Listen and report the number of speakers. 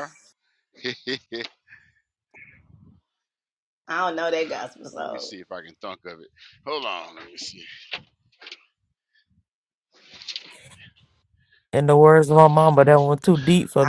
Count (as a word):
three